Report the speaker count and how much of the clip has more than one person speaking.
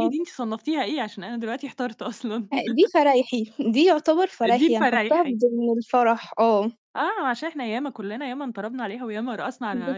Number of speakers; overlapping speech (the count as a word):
two, about 14%